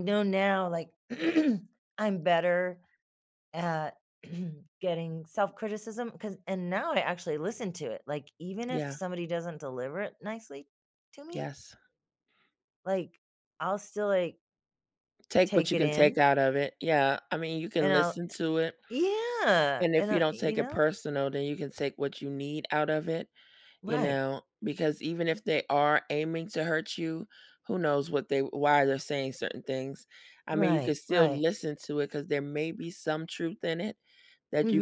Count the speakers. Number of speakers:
2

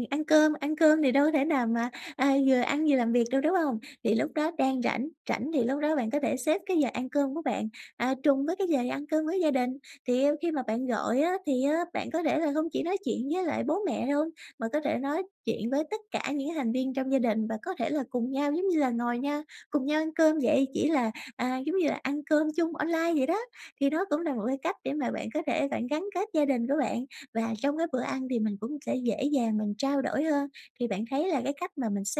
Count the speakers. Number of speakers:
1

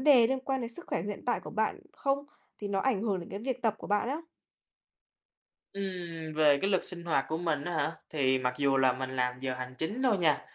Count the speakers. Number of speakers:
2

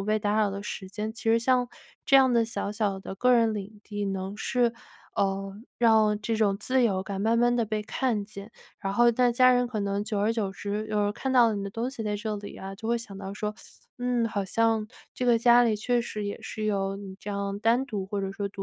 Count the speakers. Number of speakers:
1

